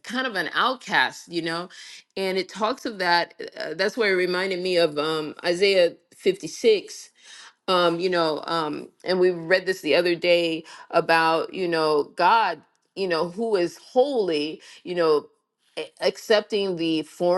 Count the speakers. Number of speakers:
one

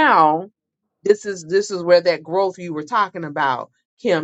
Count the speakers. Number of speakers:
one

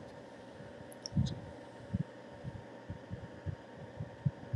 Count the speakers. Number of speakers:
zero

